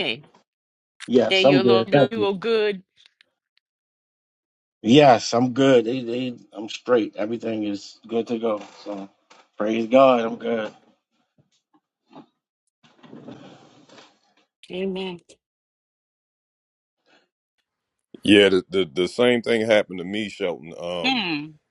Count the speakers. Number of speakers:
three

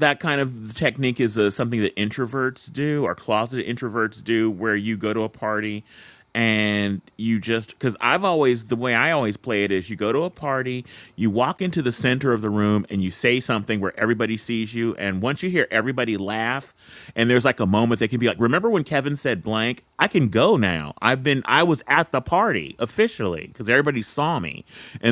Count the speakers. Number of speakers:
one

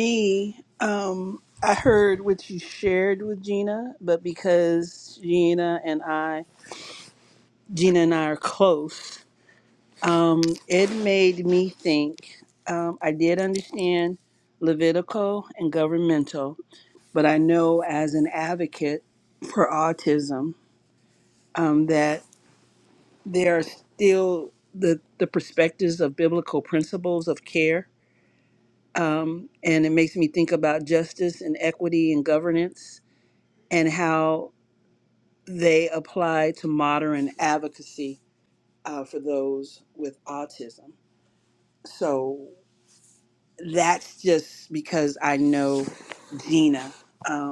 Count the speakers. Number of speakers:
one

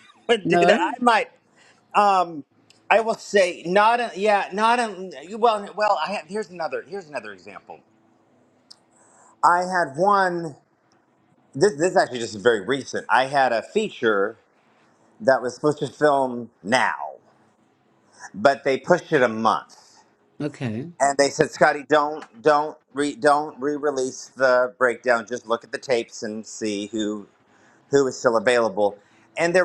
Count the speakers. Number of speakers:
two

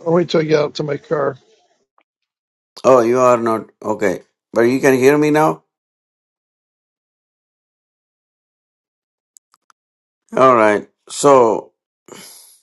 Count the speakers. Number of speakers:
two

